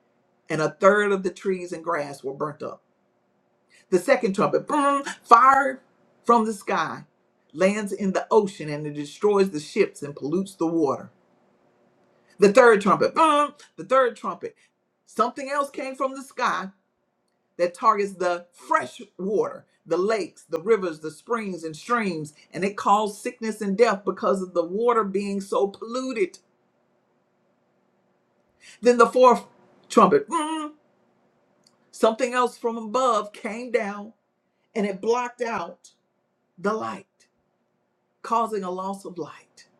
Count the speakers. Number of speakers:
one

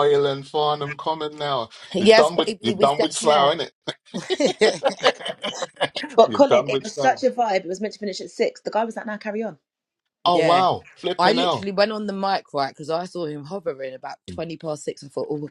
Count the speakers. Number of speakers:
three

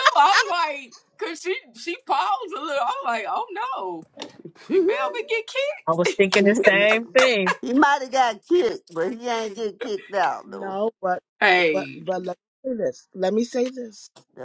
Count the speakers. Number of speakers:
four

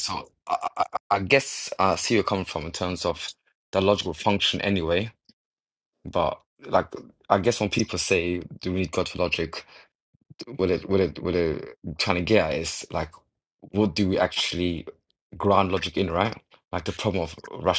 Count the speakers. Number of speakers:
one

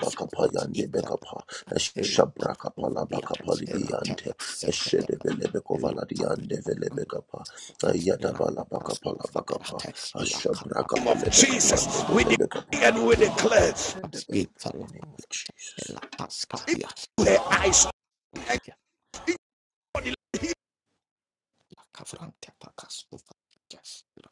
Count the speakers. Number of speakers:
three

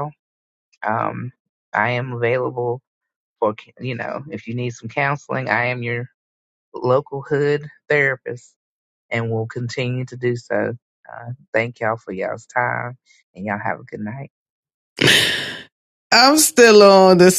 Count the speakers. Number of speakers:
two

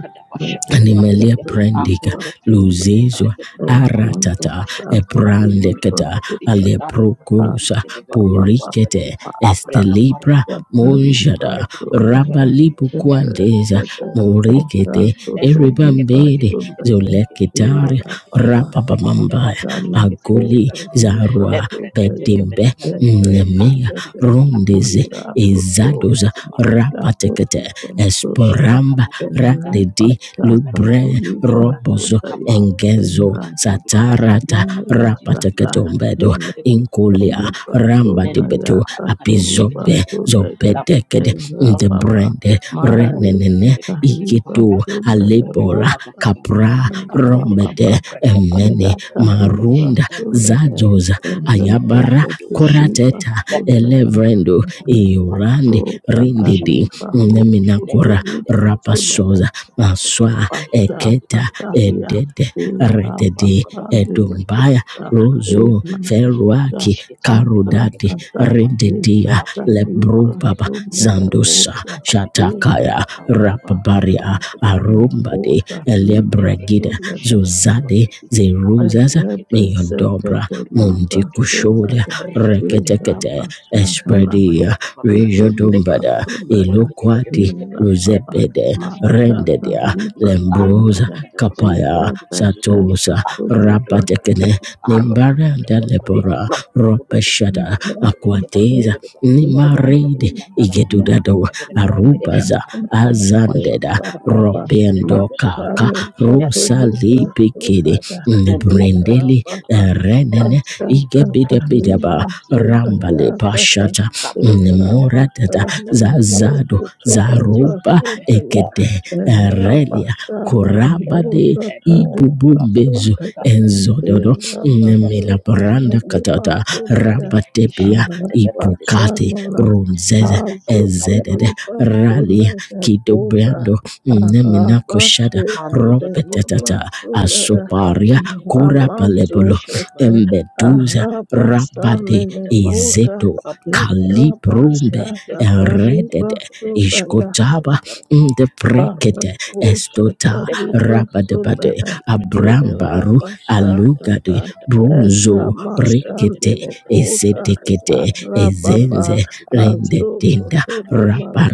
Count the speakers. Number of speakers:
three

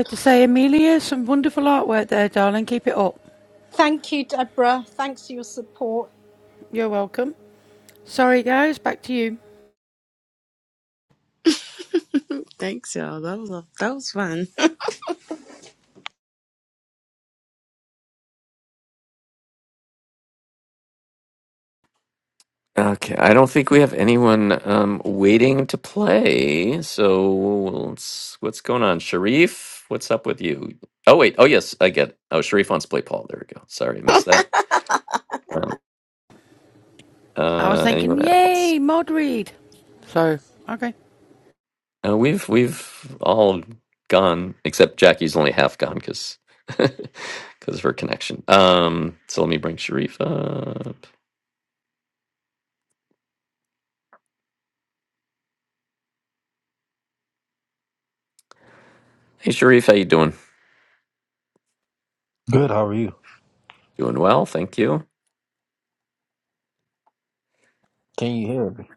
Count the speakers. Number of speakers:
five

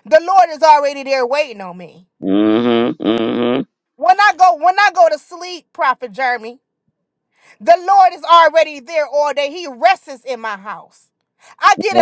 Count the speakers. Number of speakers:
two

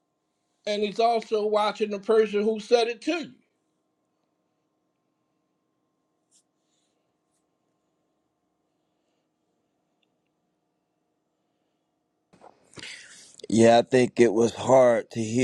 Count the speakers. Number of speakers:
two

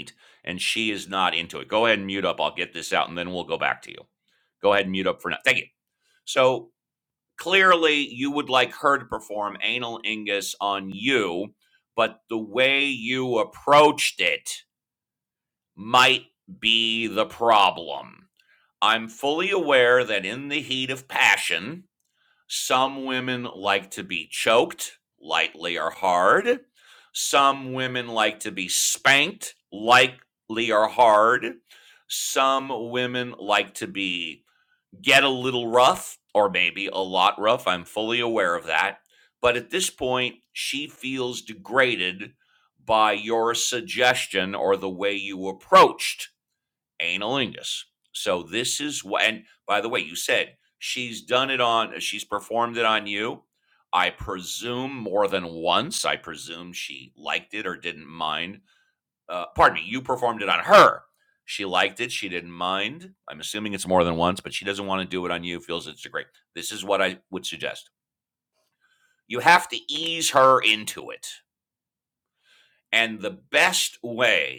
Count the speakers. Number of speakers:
one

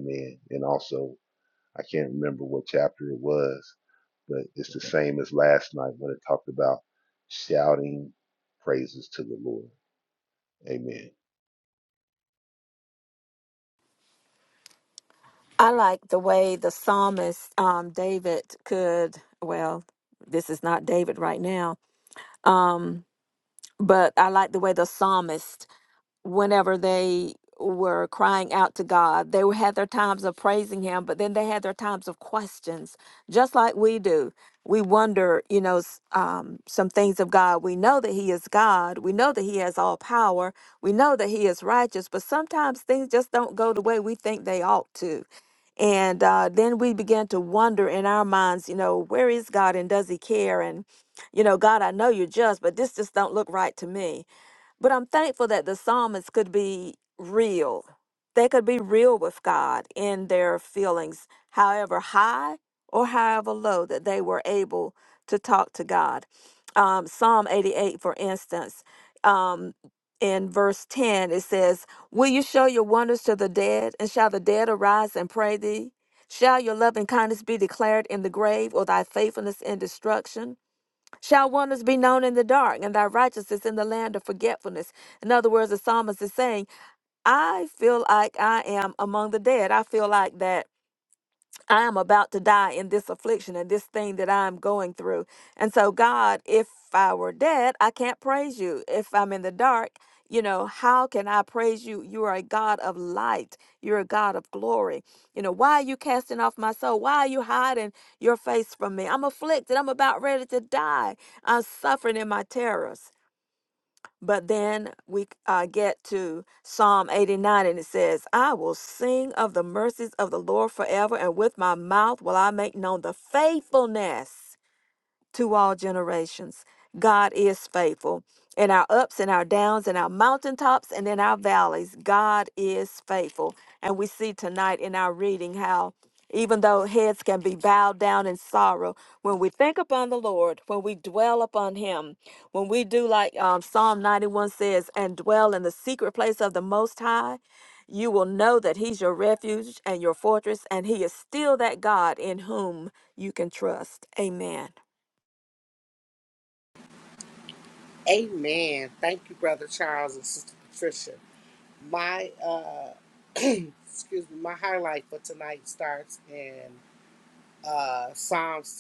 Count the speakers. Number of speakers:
three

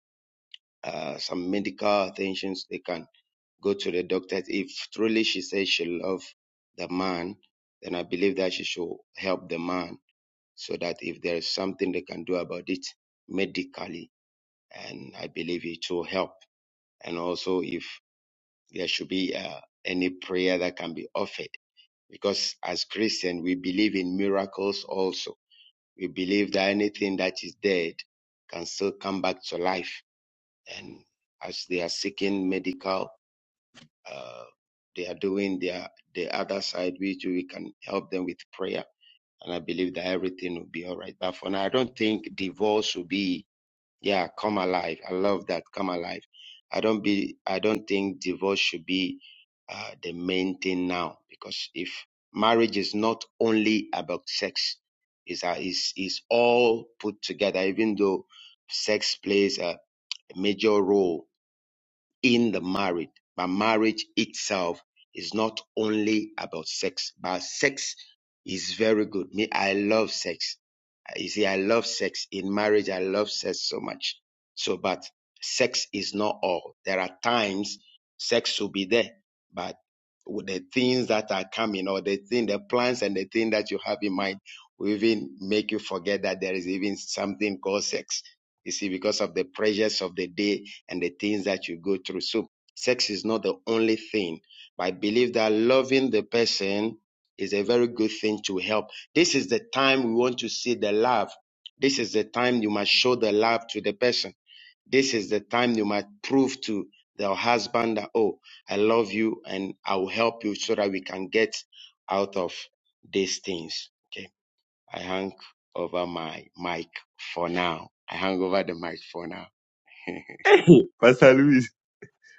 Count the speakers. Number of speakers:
two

